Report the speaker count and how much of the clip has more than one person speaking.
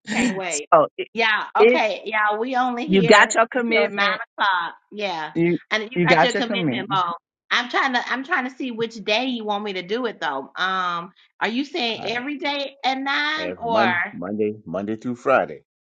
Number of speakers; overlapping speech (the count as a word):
three, about 19%